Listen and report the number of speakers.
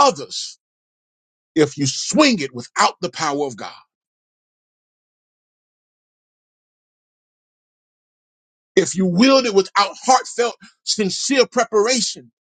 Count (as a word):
one